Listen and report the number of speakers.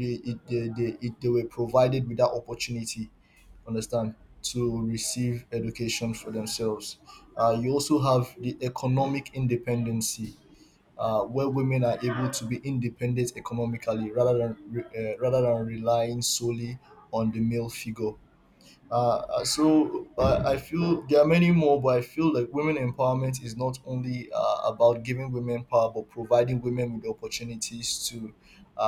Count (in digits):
1